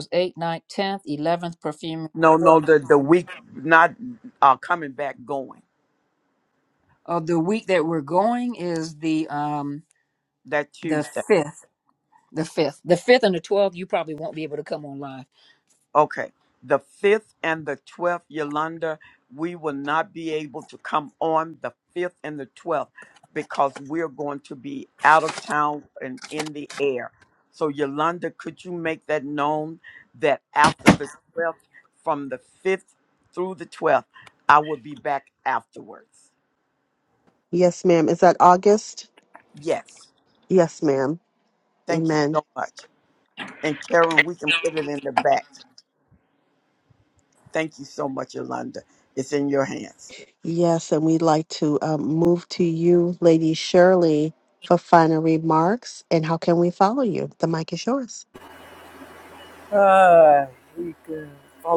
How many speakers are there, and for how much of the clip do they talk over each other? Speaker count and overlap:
four, about 2%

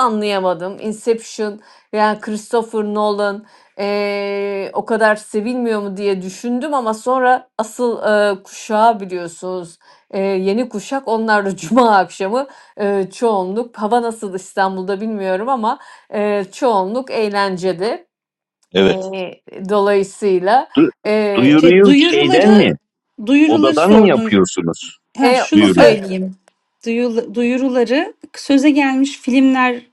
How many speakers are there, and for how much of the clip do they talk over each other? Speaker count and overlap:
three, about 8%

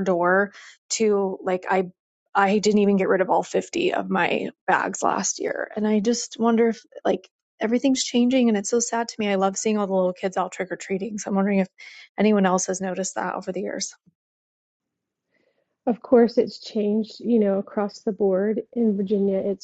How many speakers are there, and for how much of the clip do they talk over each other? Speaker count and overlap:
two, no overlap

